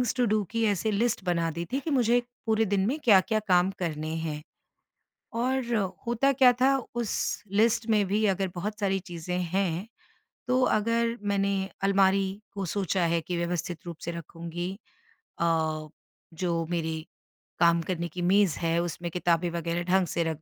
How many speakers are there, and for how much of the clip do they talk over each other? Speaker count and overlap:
1, no overlap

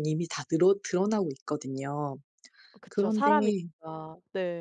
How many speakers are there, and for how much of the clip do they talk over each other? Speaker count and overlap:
2, about 10%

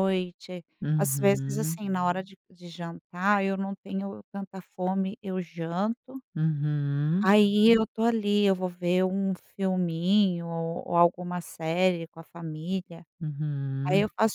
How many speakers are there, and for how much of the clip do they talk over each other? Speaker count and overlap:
2, about 7%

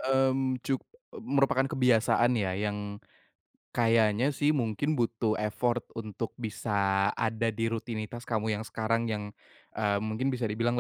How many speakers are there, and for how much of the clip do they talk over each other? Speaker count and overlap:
1, no overlap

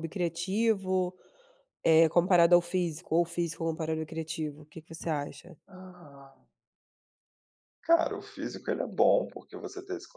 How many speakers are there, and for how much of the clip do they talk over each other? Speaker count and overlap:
2, no overlap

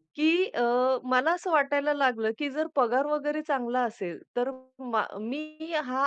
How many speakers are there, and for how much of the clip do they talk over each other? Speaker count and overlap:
1, no overlap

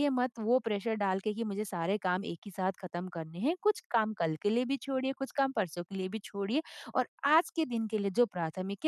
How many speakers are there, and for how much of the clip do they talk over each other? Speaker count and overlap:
1, no overlap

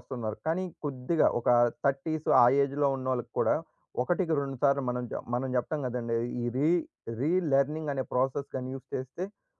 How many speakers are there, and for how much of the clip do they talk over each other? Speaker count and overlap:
1, no overlap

